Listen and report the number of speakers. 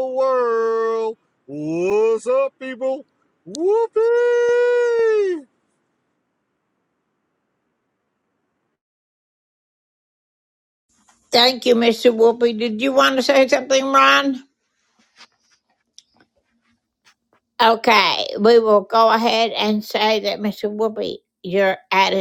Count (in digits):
2